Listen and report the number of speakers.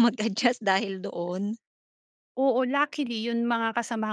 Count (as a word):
two